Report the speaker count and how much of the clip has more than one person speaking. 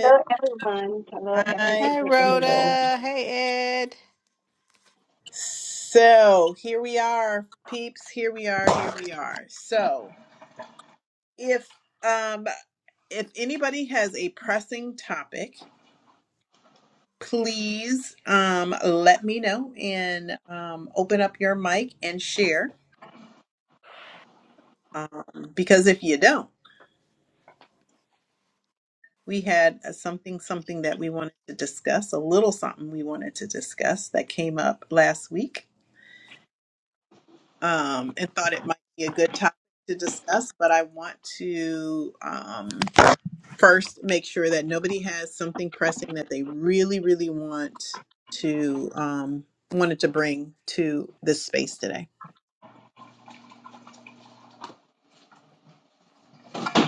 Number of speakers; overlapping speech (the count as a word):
three, about 3%